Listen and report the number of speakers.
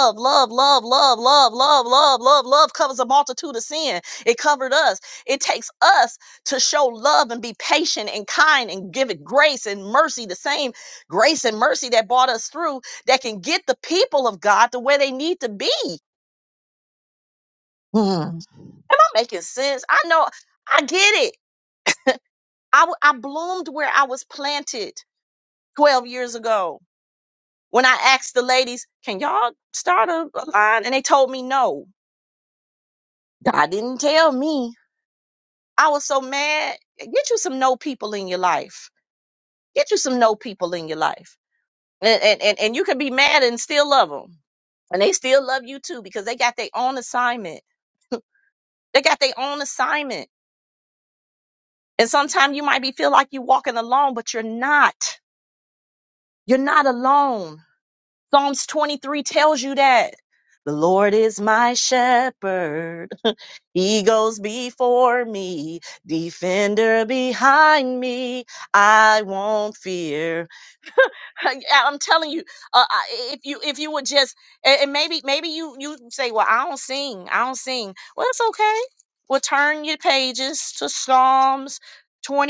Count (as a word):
one